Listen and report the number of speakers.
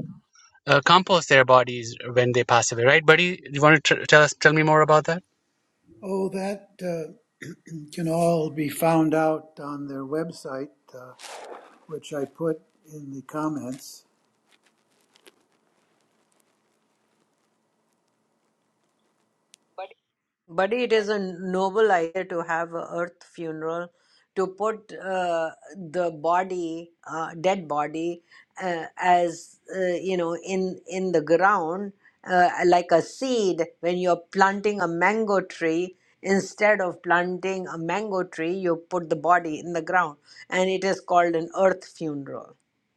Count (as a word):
three